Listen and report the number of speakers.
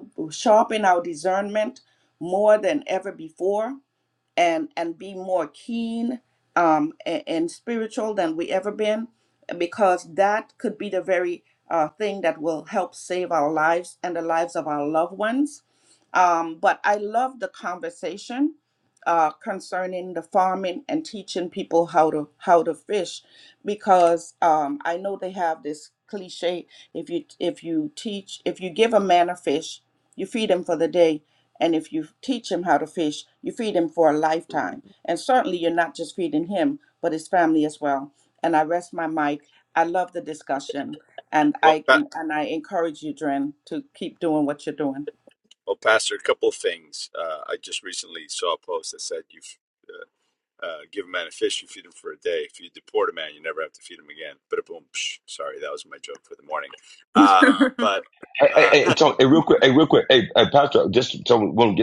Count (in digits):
3